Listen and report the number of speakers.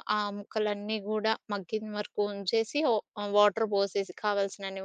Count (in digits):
1